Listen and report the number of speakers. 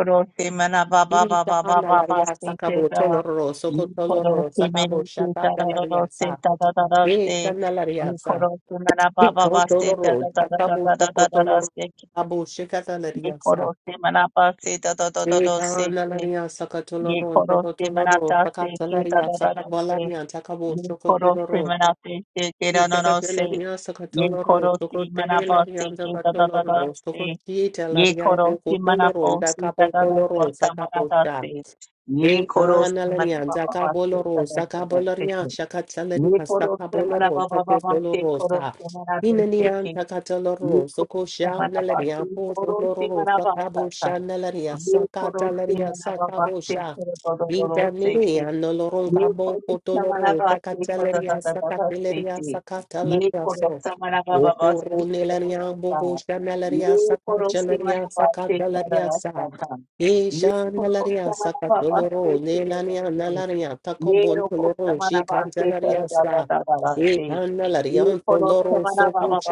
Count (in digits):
2